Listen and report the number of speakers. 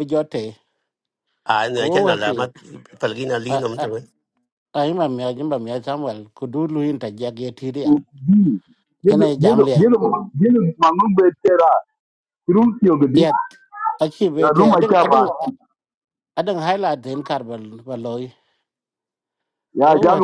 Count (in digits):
3